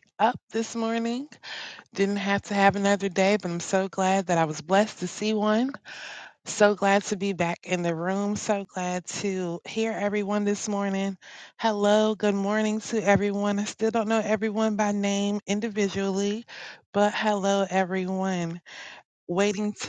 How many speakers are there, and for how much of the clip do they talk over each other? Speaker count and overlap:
1, no overlap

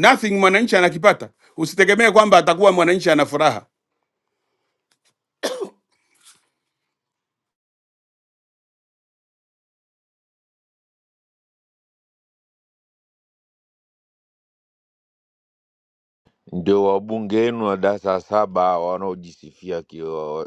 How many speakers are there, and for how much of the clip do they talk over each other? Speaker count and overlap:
2, no overlap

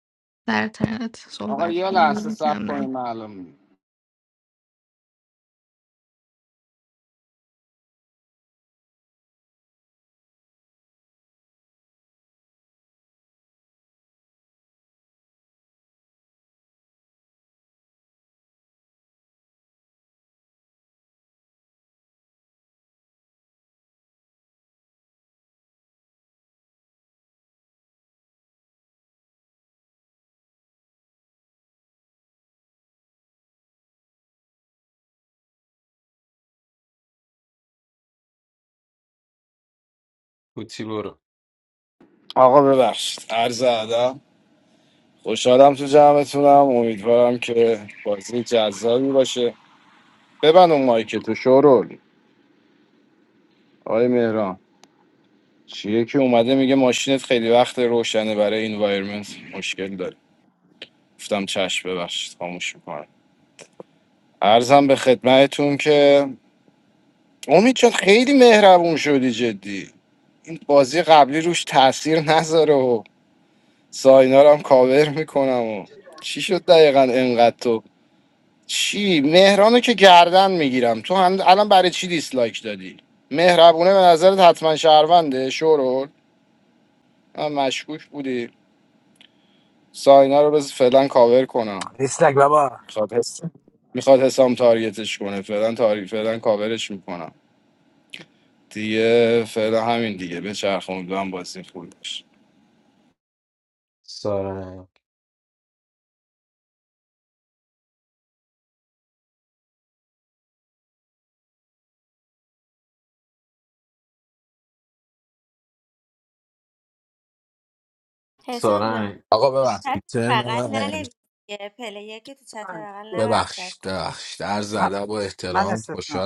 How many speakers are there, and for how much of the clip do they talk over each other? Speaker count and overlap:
6, about 4%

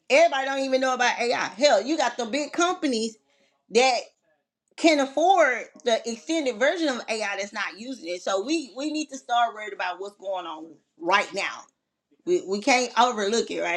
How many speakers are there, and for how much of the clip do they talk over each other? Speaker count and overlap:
1, no overlap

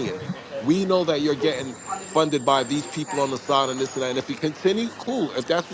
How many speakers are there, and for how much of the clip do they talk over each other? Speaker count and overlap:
1, no overlap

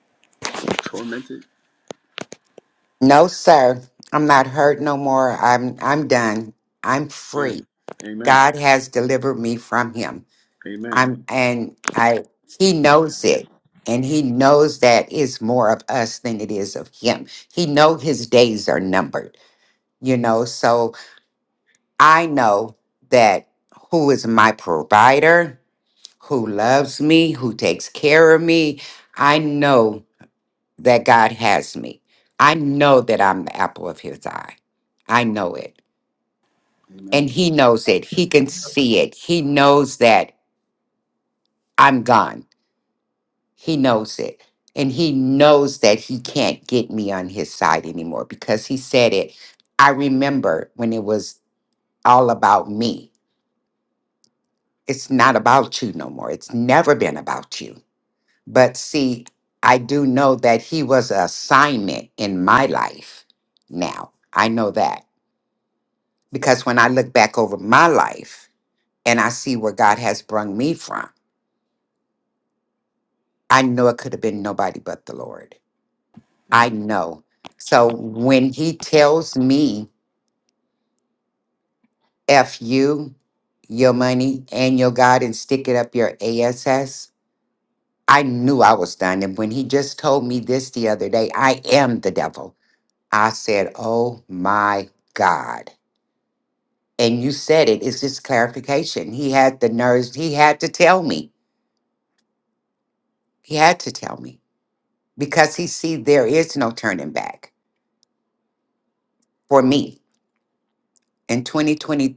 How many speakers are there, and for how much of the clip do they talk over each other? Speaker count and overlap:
2, about 1%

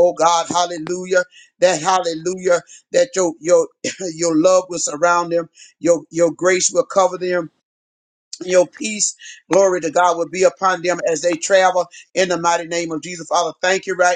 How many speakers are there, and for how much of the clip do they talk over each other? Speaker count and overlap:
1, no overlap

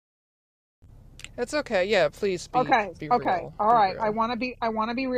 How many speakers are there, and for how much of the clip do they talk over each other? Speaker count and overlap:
2, about 31%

